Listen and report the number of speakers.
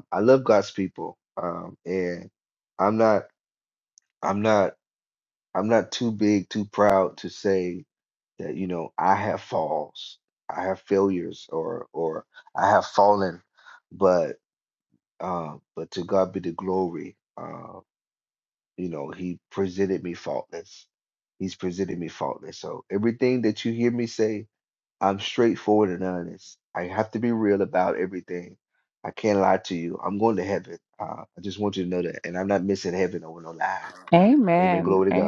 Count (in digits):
2